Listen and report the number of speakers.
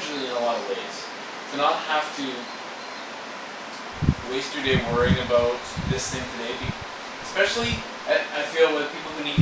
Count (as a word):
one